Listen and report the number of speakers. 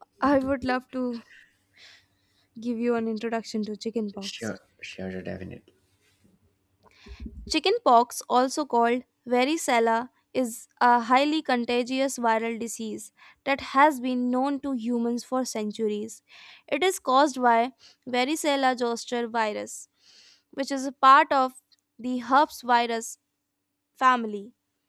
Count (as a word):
two